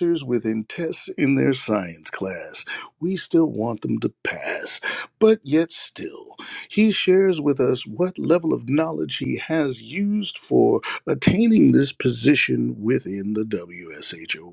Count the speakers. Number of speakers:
one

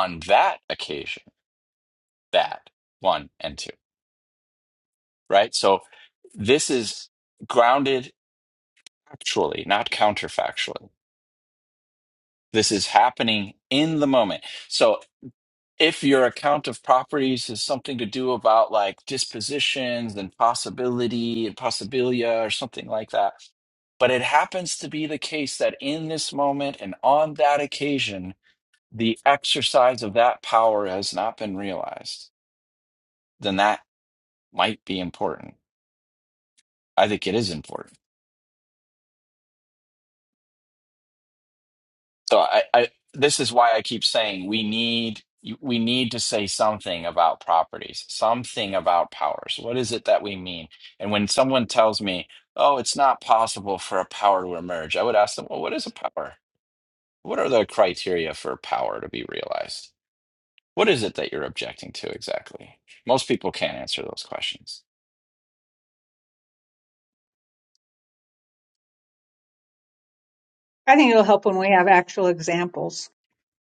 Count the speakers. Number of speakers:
two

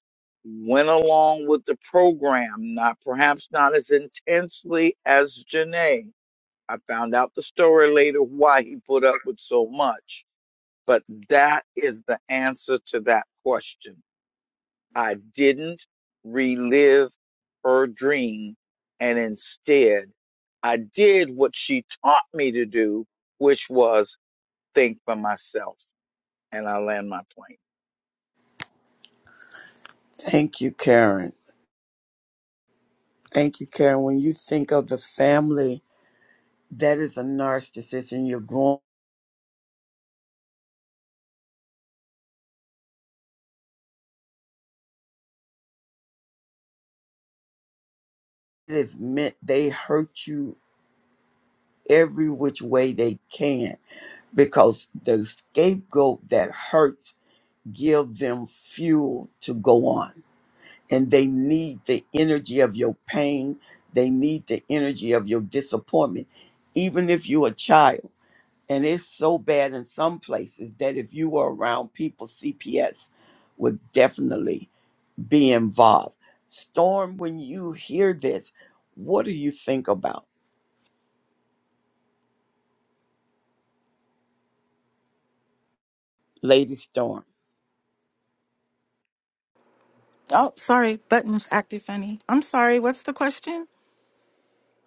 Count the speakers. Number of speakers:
three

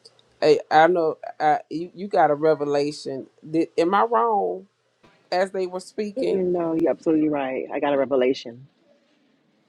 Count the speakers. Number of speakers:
two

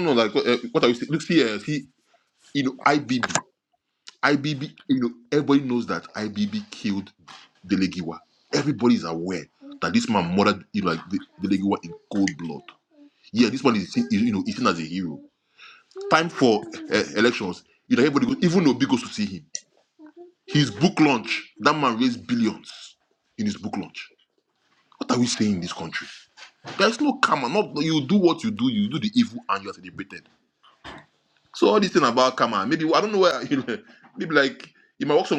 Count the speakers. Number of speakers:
one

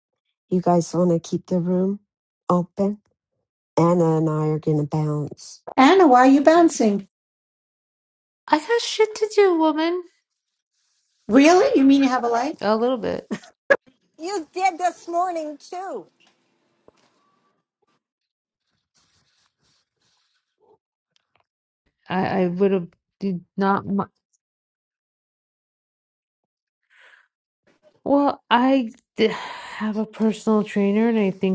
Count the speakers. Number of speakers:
four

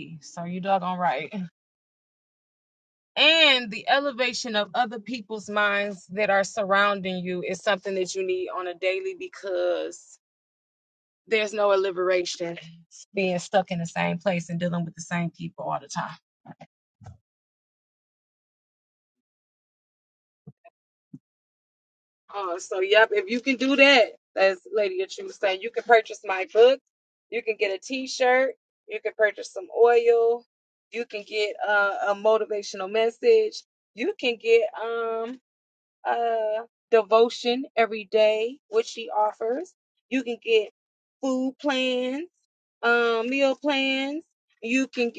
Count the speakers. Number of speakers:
one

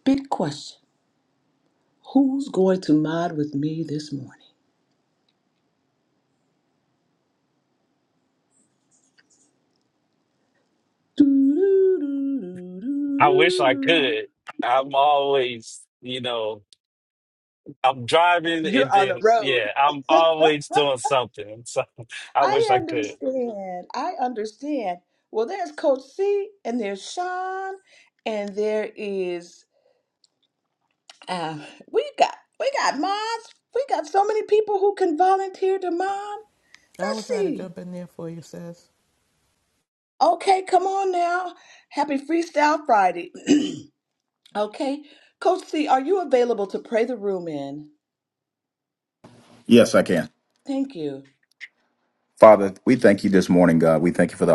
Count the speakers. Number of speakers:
four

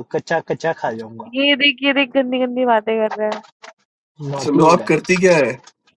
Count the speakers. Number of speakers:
three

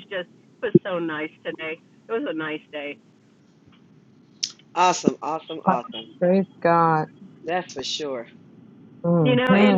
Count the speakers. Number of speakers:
three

